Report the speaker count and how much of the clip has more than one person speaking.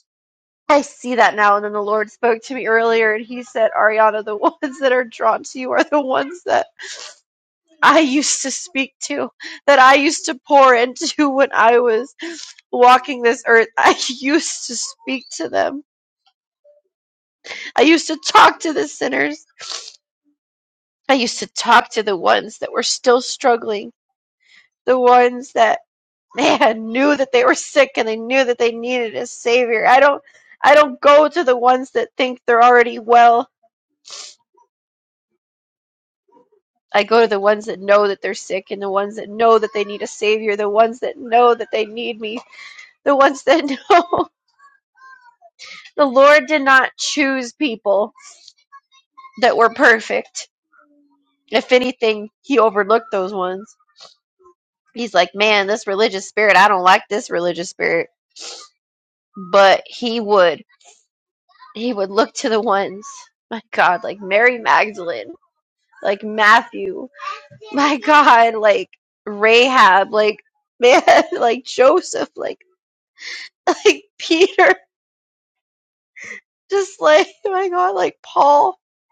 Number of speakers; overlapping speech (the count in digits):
1, no overlap